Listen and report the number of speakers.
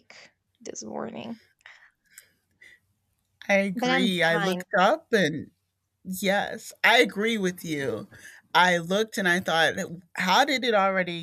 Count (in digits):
2